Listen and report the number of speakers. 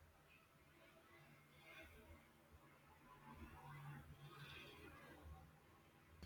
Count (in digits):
0